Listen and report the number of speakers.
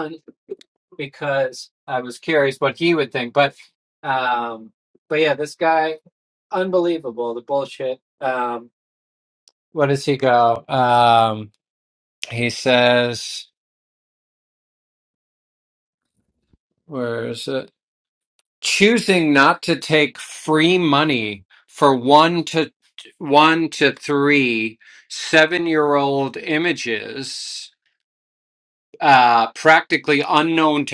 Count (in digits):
1